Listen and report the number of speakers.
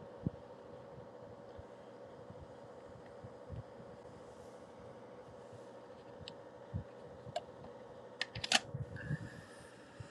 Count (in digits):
0